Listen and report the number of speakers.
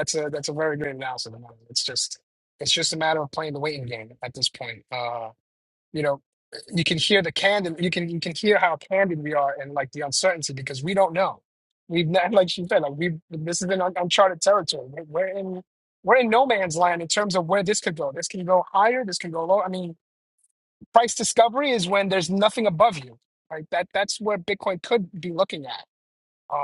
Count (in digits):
1